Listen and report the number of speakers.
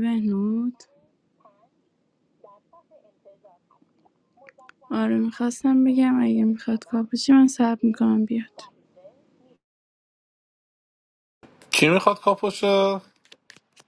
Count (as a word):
two